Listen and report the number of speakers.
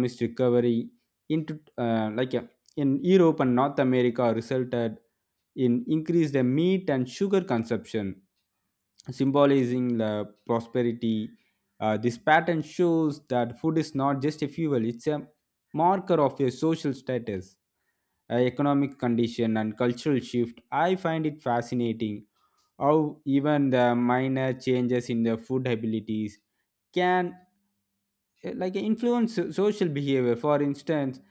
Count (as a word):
one